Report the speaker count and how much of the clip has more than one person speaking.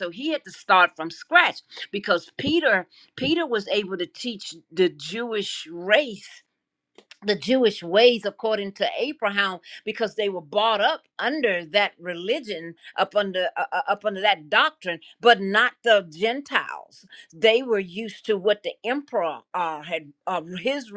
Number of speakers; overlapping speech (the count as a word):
one, no overlap